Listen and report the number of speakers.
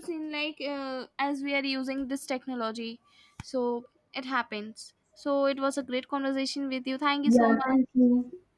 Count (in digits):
2